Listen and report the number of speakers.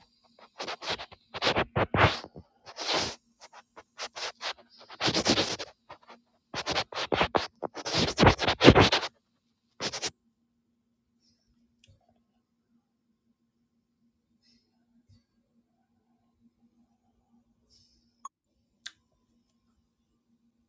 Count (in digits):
0